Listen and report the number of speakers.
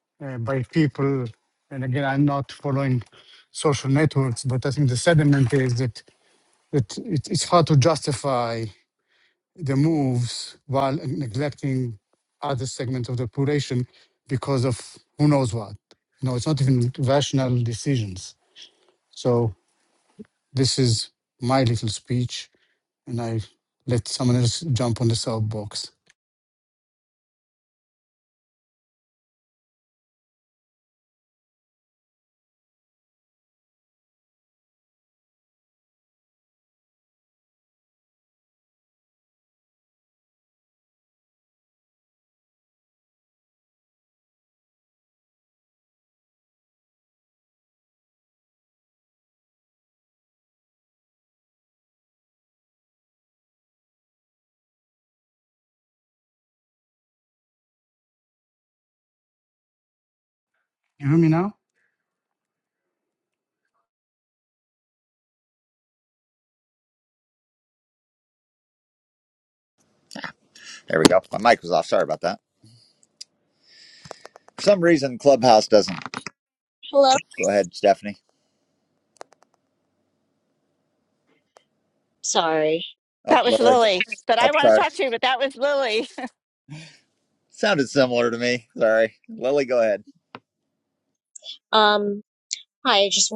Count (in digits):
4